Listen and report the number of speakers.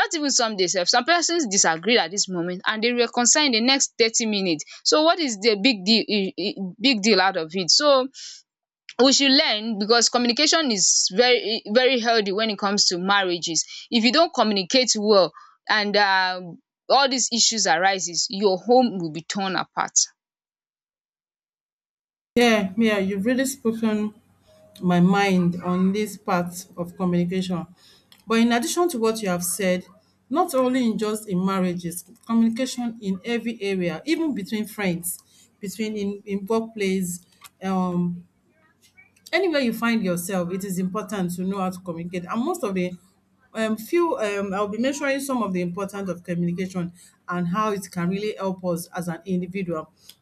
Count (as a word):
two